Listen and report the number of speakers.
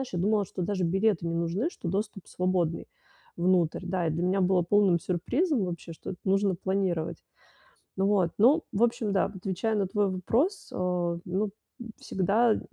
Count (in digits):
1